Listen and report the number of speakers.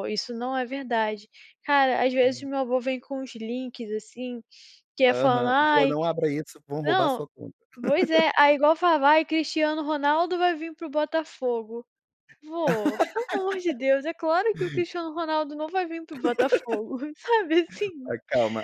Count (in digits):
2